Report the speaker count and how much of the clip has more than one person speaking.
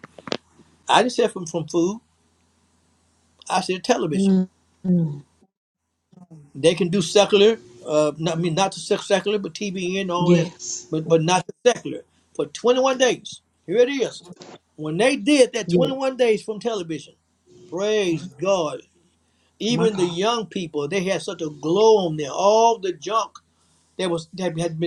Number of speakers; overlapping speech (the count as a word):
two, about 5%